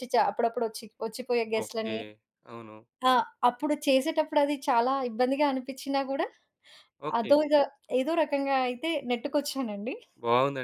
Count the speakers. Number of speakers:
2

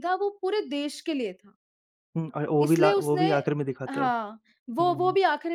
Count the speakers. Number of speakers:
2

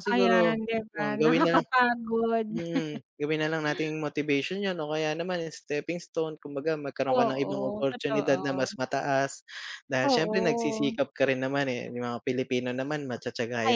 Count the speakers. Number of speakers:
2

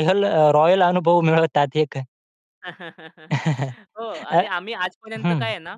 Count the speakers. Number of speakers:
2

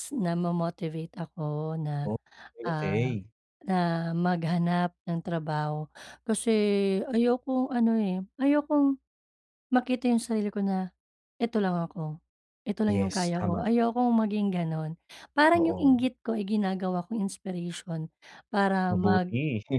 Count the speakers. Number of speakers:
2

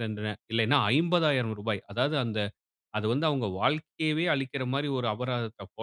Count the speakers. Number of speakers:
1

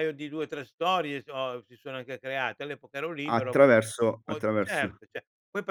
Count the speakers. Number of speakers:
2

